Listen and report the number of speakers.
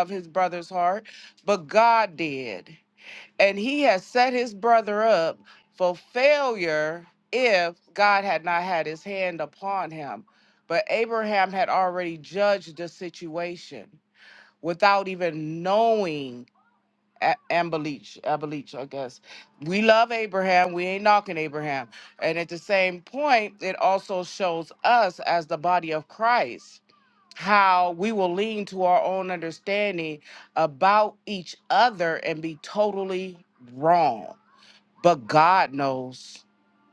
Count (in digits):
1